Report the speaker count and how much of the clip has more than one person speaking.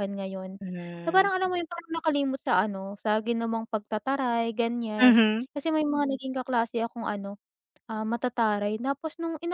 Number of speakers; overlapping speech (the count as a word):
two, about 5%